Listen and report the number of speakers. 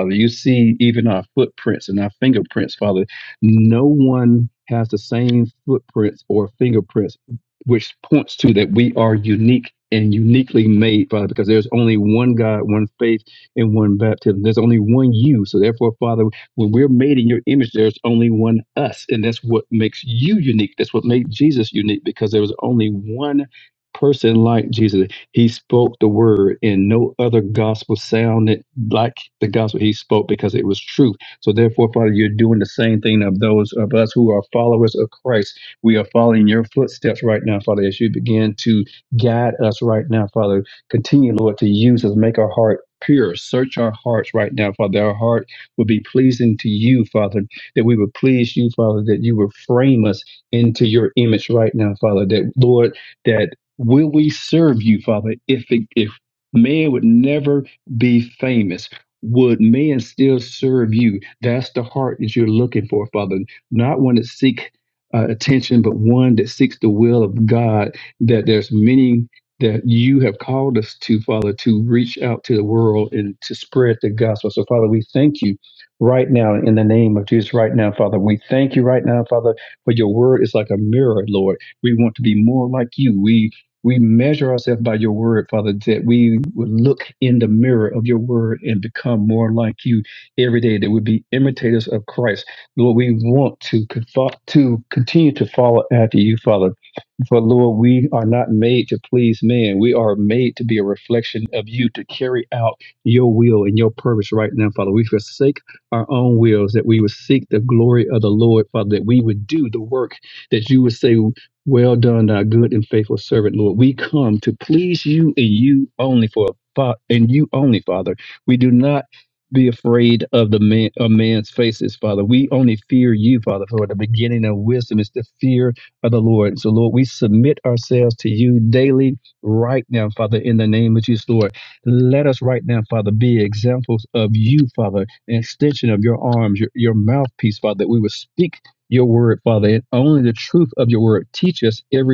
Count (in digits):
1